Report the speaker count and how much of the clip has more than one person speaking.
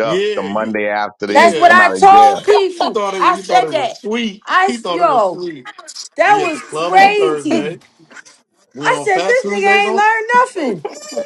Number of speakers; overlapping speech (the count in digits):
3, about 60%